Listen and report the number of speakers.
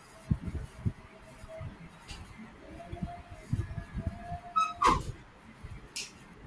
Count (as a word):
zero